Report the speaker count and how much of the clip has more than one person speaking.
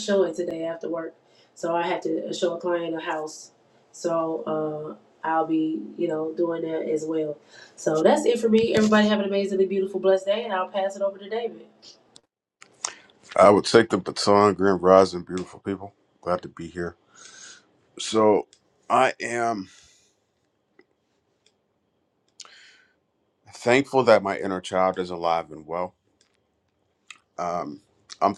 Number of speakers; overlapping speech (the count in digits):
2, no overlap